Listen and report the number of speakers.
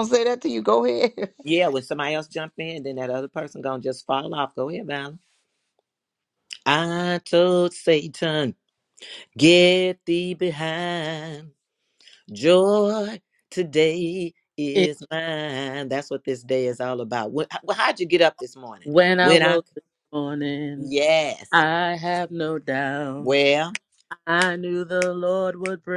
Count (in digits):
3